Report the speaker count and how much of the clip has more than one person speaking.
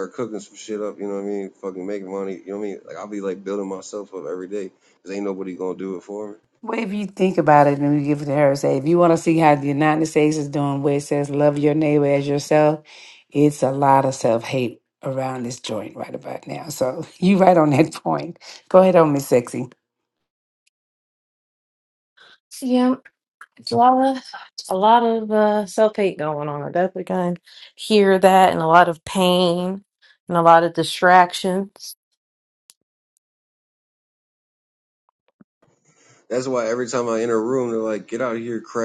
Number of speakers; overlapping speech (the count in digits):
3, no overlap